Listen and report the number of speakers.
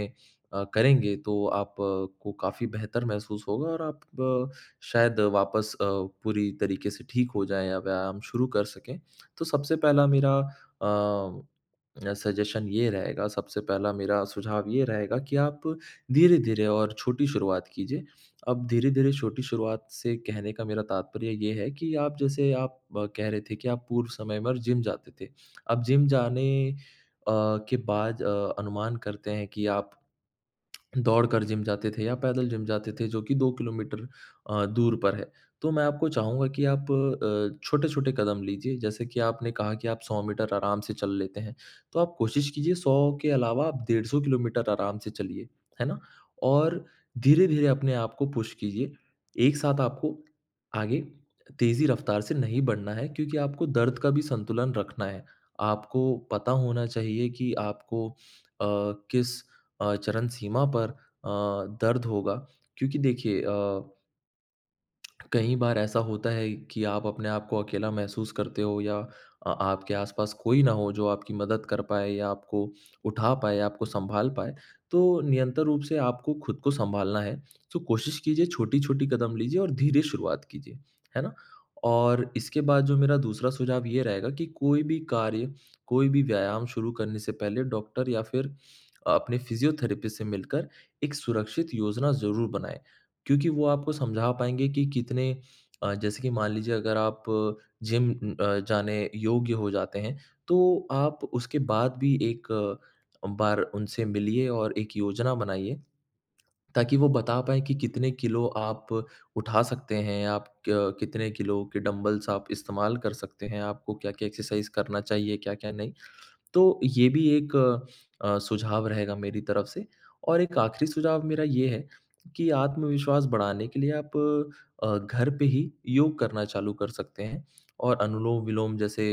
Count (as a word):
one